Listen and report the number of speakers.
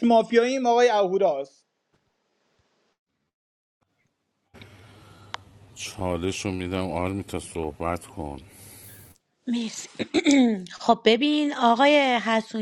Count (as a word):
three